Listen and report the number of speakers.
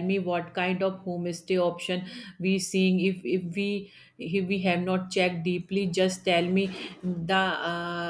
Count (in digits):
1